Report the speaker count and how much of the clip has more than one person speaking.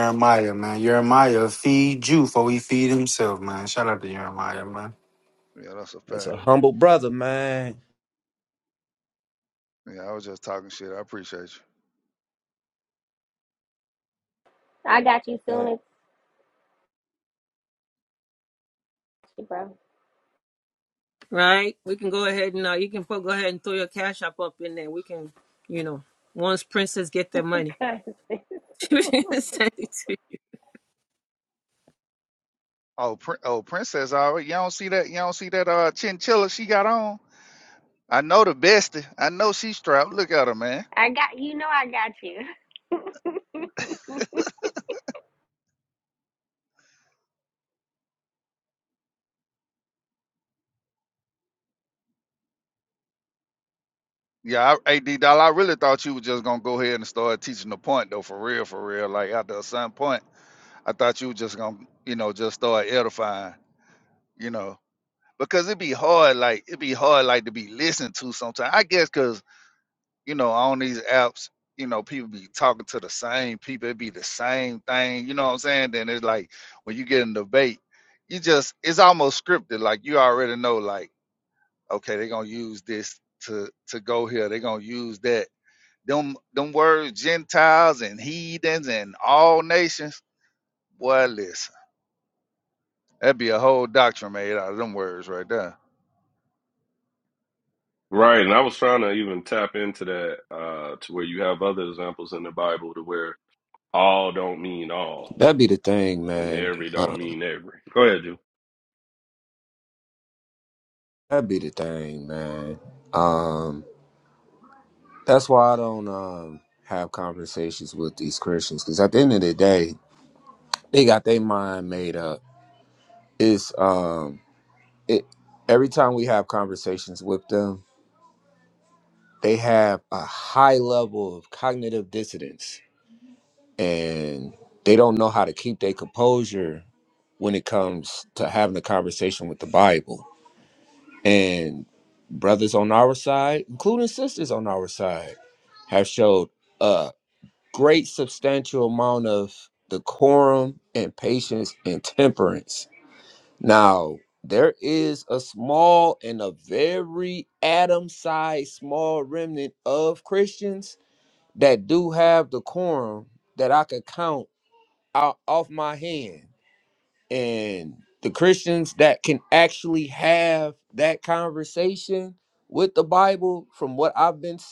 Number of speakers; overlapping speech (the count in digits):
6, about 1%